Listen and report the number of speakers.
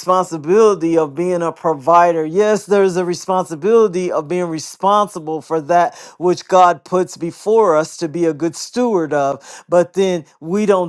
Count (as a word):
one